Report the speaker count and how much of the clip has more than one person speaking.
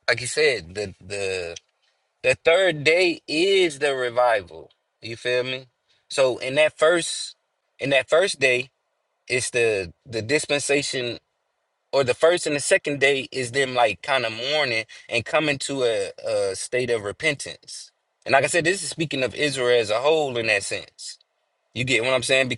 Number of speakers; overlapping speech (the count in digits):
1, no overlap